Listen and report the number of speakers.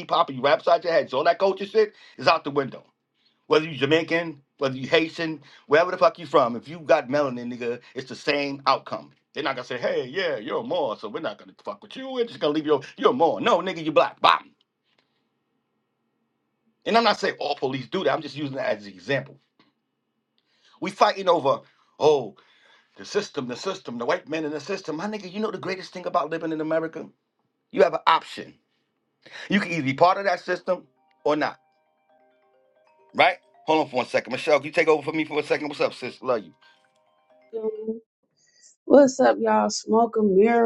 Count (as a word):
two